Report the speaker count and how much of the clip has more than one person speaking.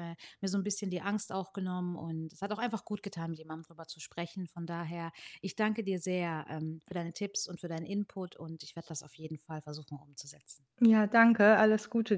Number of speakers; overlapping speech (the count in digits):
2, no overlap